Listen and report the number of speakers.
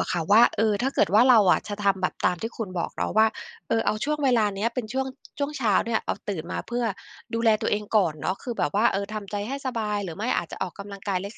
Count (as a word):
one